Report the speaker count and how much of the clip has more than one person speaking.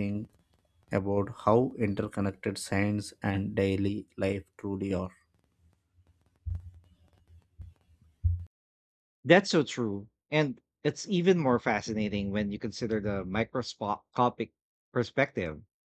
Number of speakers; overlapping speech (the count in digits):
2, no overlap